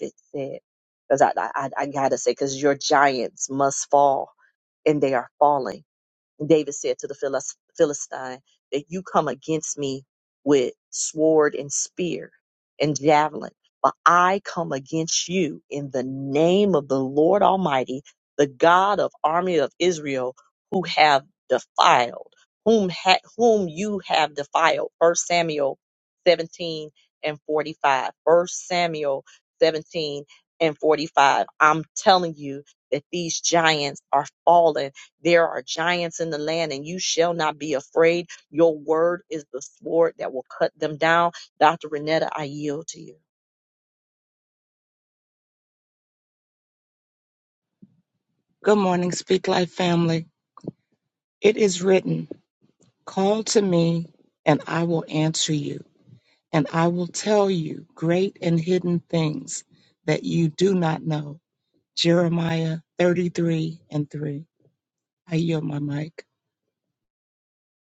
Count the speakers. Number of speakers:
2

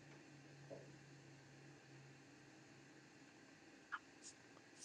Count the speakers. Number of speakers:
0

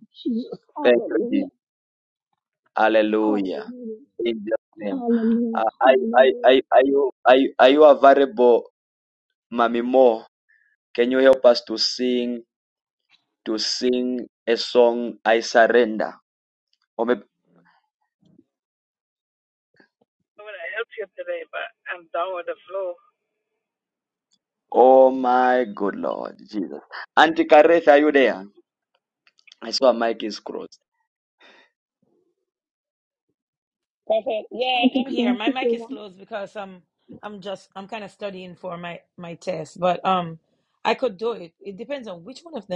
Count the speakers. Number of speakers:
4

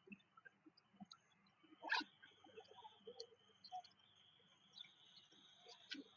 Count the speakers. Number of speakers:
0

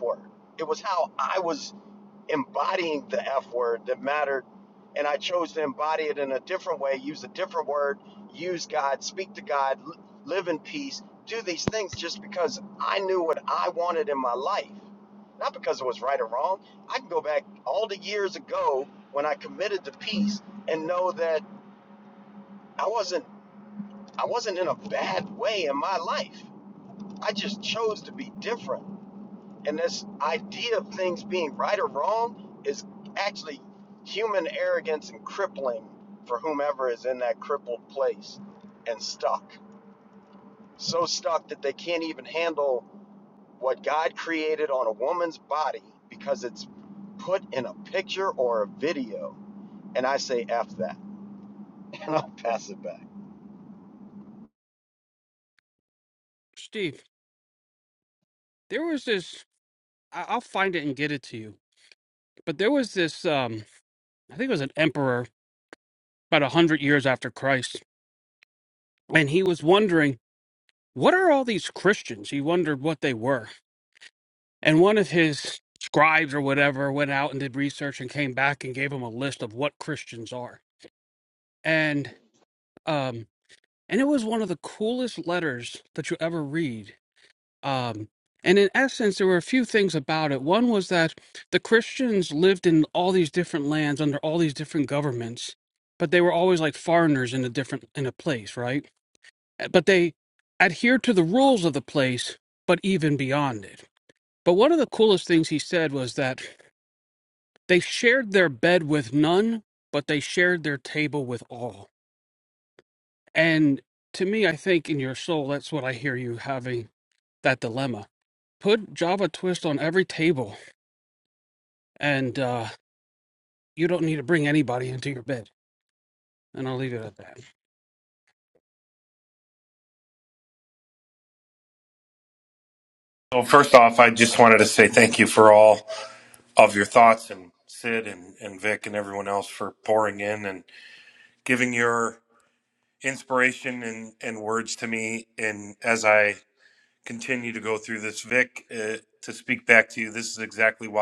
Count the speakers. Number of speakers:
3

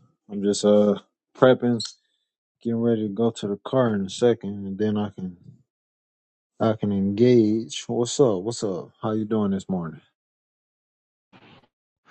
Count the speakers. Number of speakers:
1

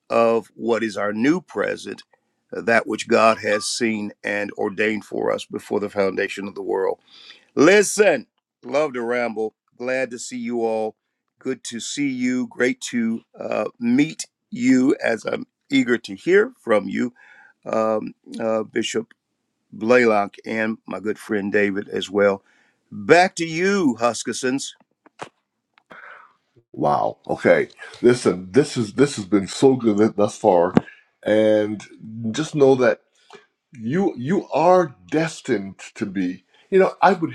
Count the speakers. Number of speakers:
2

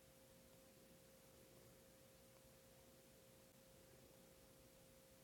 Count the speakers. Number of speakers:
0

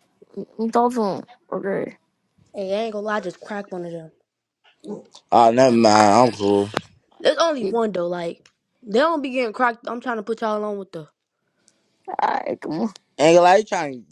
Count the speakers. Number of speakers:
3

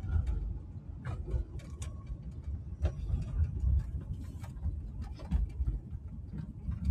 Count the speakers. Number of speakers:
0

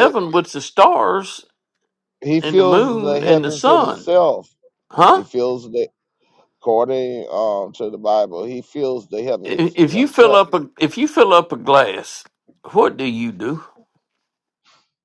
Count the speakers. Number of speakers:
2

